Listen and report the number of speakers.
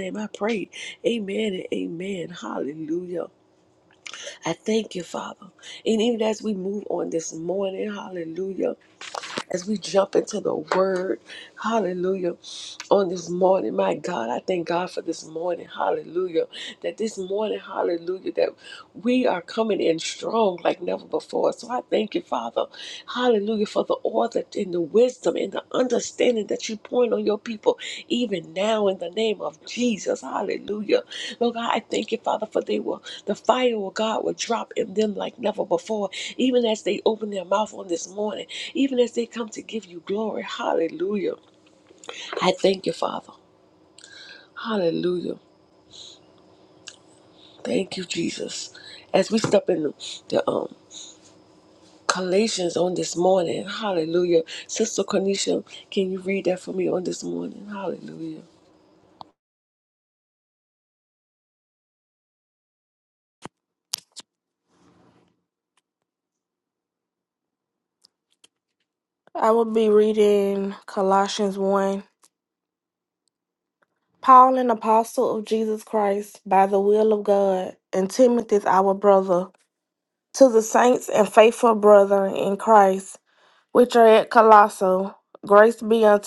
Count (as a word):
two